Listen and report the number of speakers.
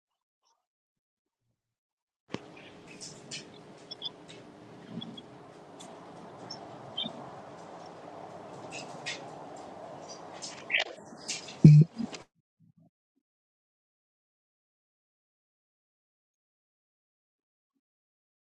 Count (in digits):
0